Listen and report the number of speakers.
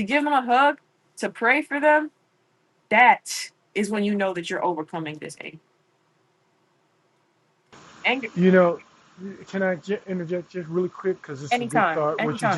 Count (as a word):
two